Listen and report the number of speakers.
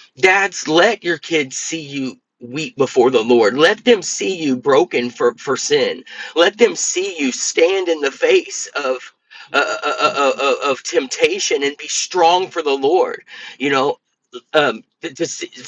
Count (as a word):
one